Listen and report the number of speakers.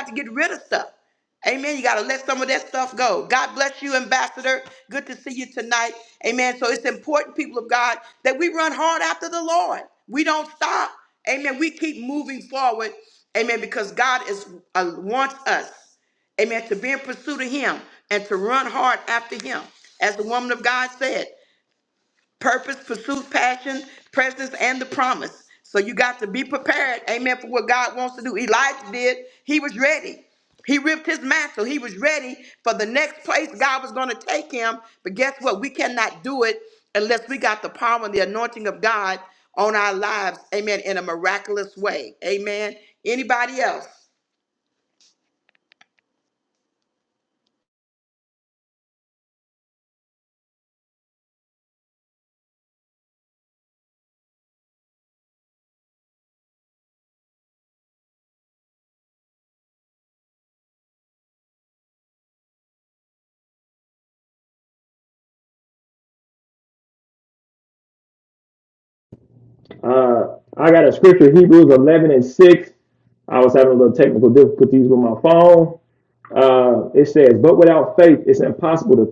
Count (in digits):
2